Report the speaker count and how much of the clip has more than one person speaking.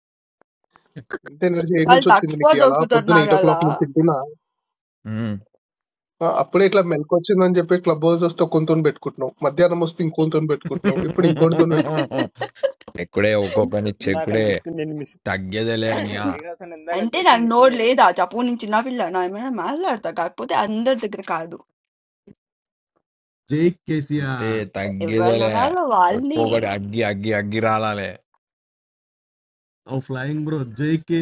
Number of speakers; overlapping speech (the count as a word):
five, about 17%